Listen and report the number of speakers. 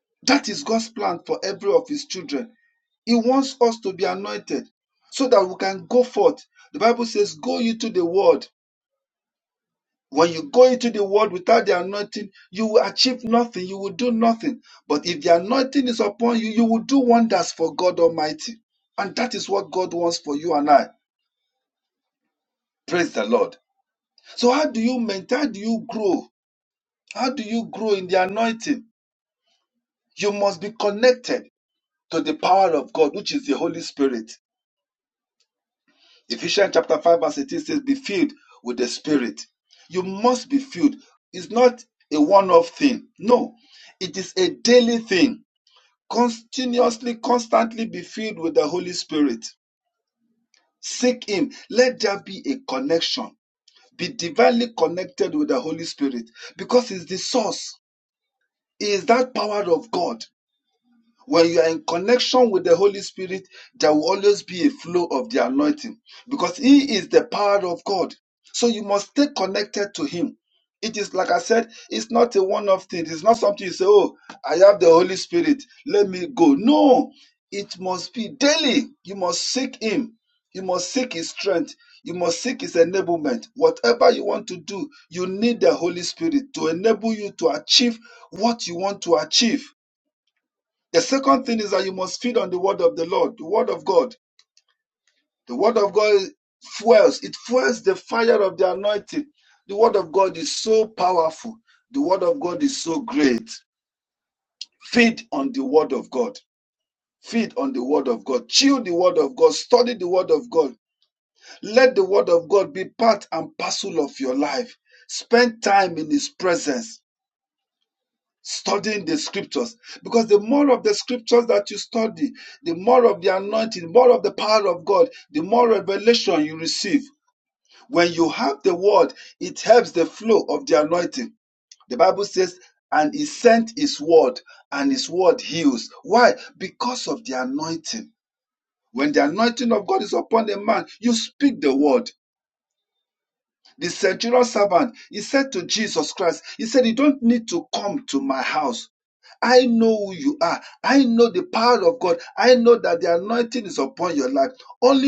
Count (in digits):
1